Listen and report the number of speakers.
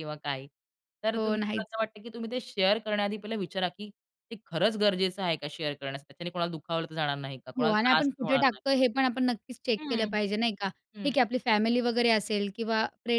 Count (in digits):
2